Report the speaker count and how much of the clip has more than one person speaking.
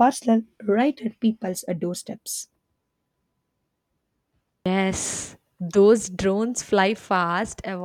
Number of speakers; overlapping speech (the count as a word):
two, no overlap